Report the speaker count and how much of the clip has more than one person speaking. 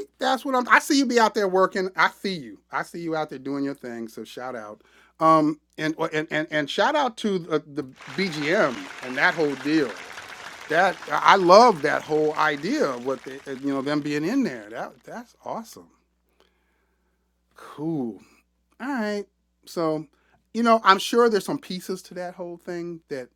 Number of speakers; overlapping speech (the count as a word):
one, no overlap